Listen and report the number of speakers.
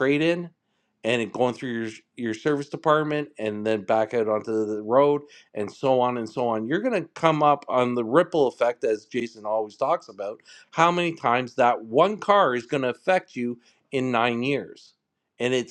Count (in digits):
1